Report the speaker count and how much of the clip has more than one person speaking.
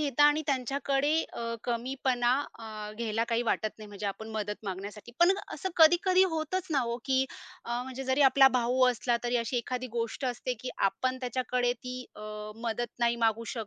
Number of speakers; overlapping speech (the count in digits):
1, no overlap